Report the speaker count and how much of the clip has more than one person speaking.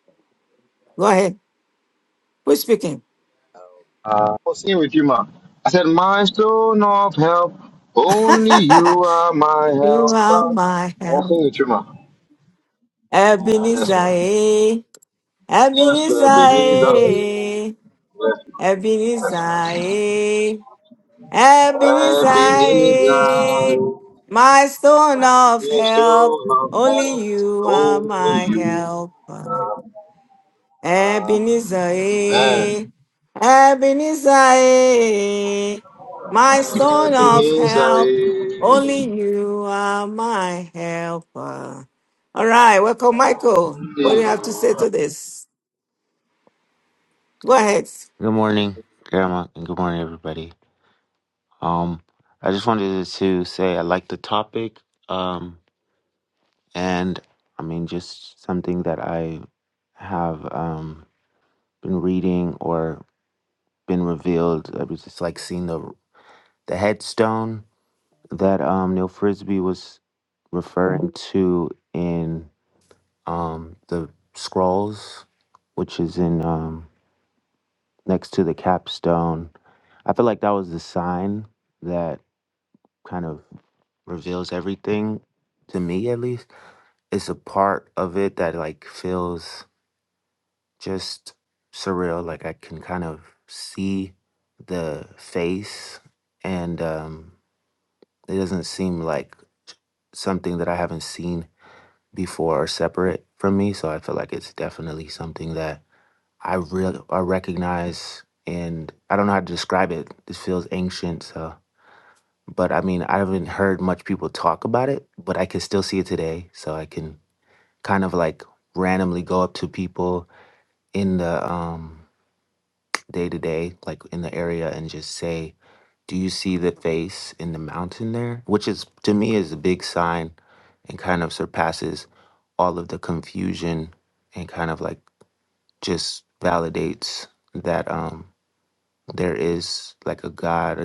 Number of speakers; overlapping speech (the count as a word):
three, about 6%